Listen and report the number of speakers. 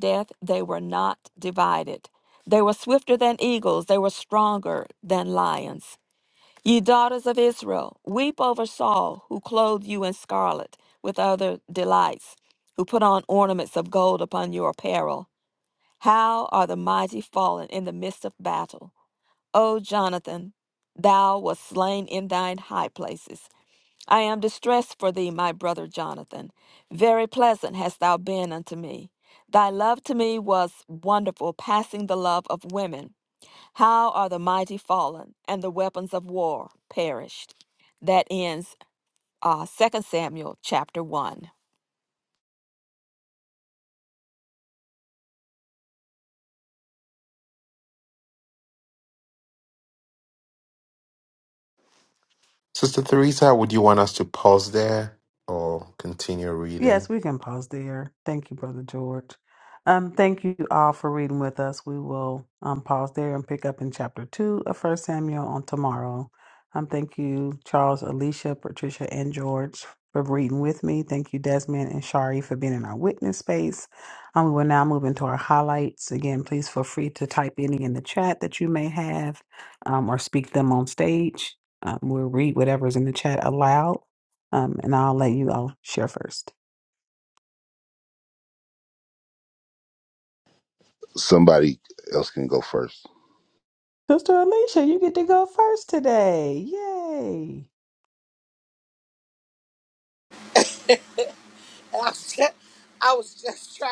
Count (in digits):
5